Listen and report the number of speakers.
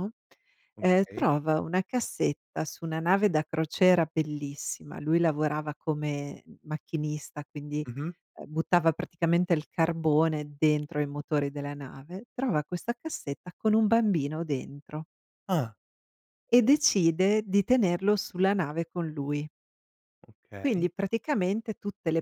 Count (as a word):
two